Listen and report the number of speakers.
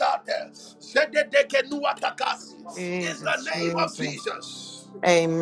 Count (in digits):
2